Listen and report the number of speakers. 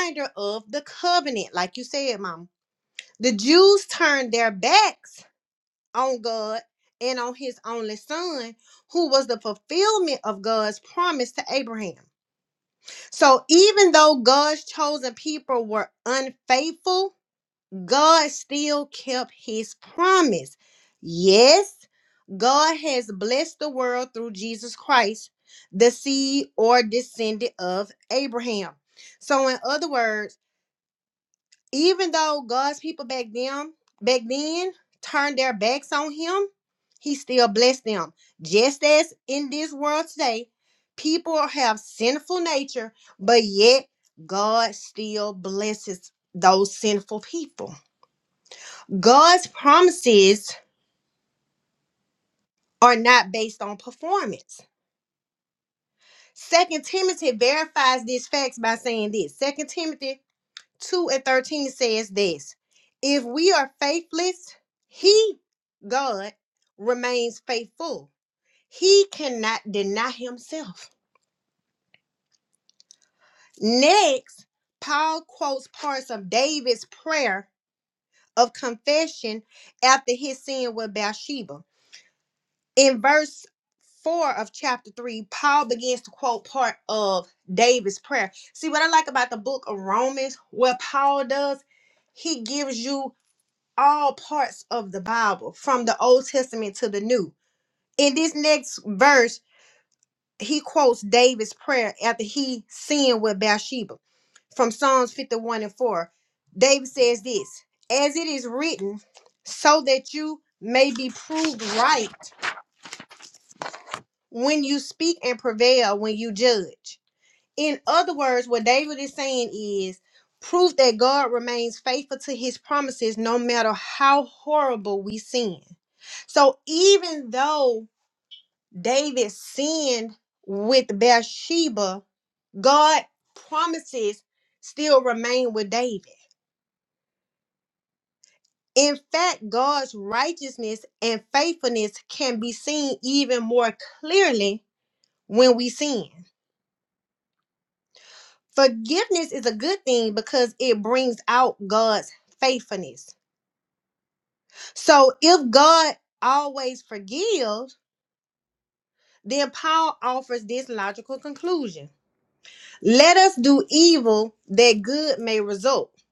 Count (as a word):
one